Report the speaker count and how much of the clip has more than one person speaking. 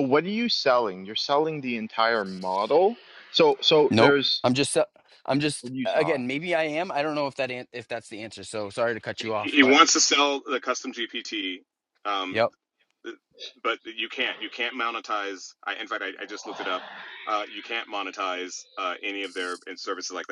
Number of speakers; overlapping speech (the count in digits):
3, about 7%